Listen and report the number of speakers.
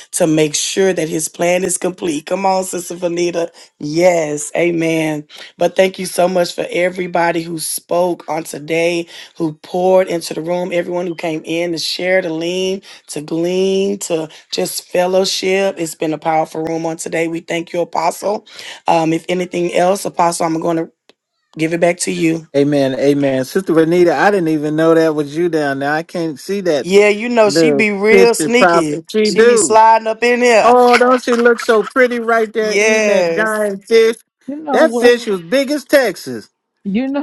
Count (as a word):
three